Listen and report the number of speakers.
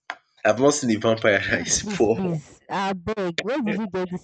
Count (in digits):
2